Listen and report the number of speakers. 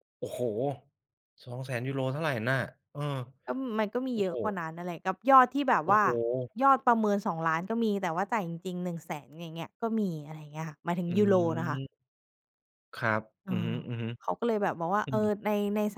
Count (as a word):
two